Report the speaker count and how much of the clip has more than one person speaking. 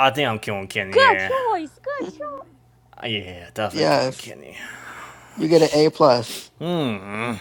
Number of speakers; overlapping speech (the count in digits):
3, about 15%